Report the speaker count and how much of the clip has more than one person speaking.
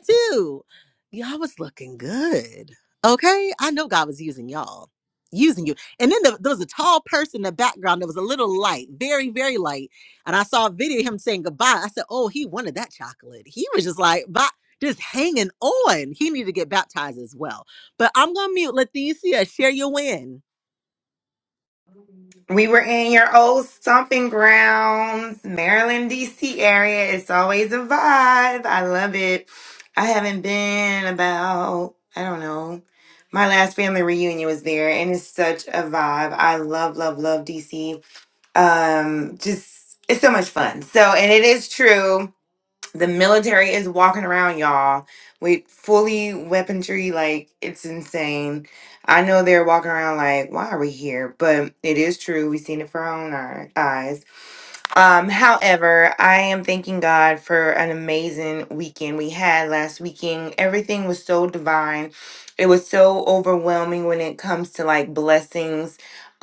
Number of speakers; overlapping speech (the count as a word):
two, no overlap